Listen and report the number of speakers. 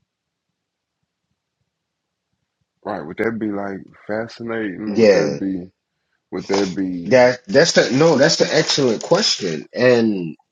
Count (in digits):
2